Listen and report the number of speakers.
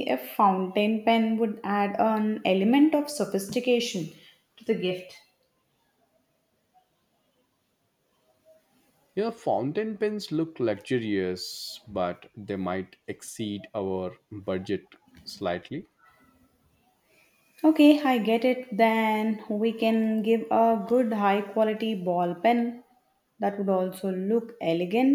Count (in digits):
2